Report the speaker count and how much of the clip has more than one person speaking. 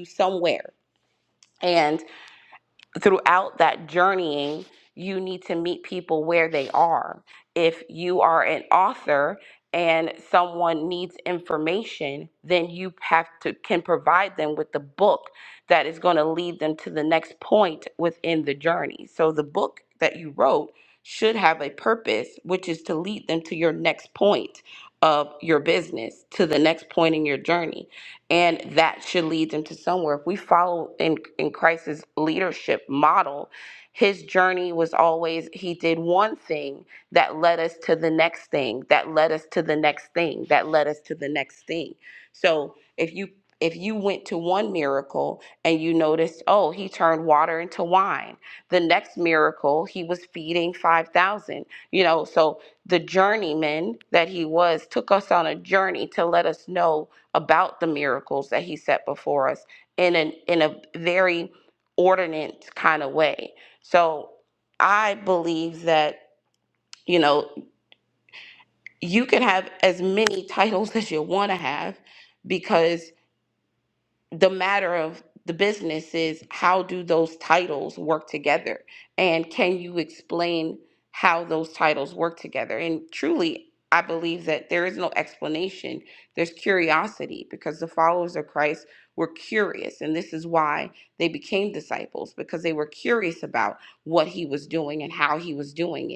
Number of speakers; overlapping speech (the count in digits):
1, no overlap